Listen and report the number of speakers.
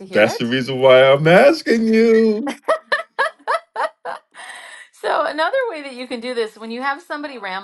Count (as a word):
two